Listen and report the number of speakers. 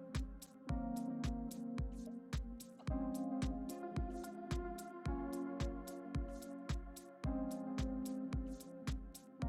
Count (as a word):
zero